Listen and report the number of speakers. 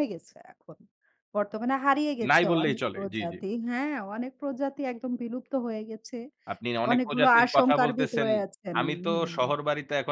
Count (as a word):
two